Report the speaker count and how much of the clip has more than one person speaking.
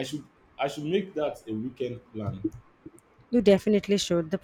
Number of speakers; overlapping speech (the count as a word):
two, no overlap